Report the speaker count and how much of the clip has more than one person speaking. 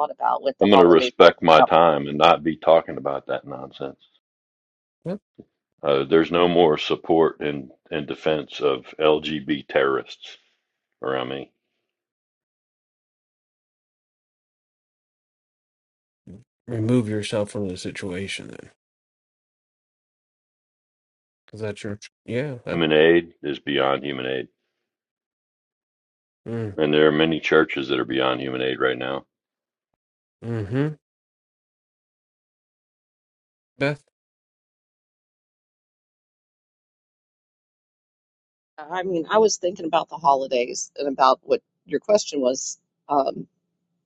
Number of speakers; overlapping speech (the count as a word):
three, about 1%